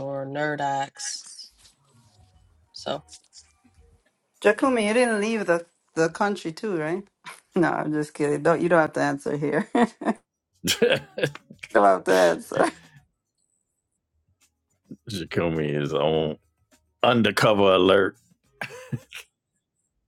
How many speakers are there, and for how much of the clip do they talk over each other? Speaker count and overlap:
3, no overlap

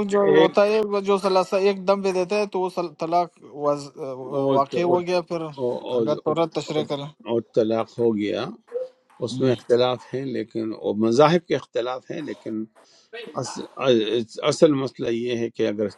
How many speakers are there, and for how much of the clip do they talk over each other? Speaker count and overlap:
2, about 10%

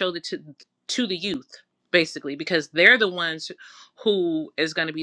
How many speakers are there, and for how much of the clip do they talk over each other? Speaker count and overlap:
1, no overlap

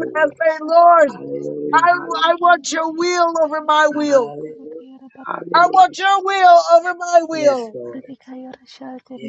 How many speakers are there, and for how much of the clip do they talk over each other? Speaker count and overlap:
3, about 53%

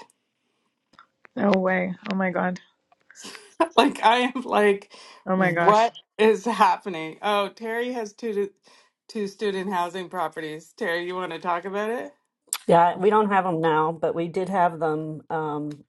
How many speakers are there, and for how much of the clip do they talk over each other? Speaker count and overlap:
3, about 3%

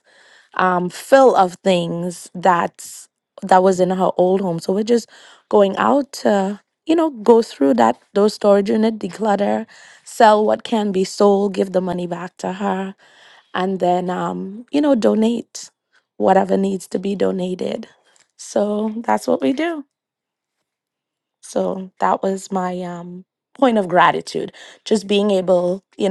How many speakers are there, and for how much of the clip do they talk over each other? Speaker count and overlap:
1, no overlap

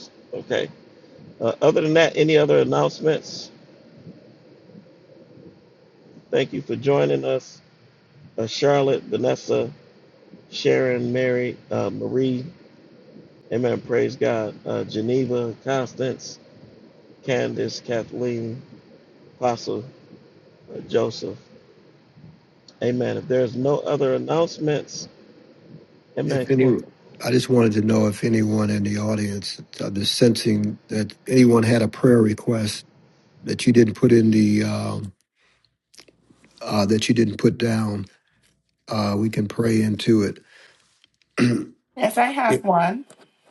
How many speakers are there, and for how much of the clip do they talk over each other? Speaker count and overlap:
3, about 1%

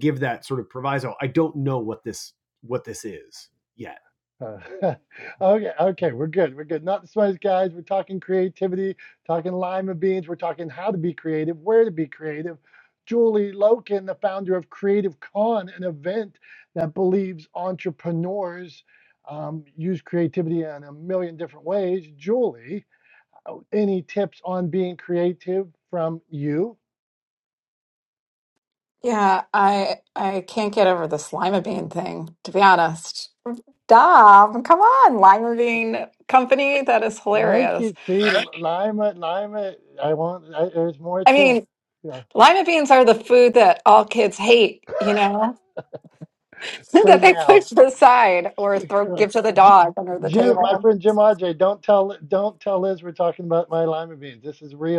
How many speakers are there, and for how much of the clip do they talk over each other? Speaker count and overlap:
3, about 4%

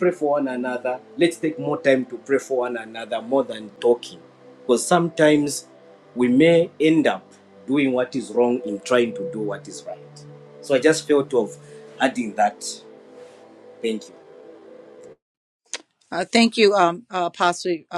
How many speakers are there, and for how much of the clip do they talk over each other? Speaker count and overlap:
2, no overlap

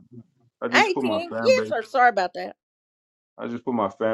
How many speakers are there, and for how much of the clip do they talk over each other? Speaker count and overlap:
2, about 25%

